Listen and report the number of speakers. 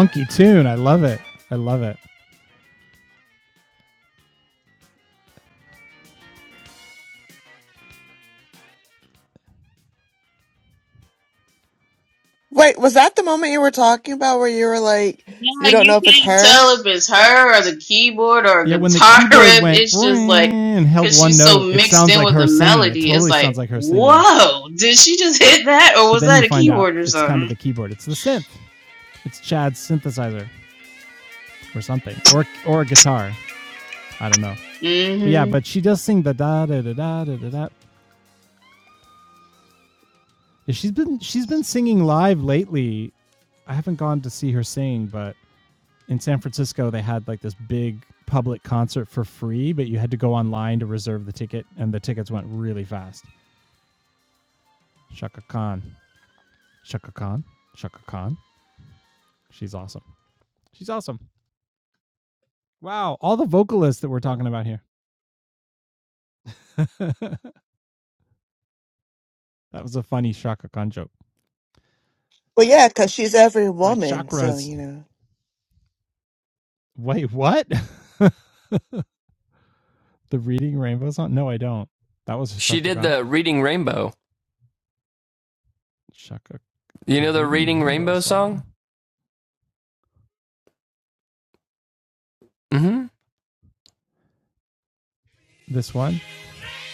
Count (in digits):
4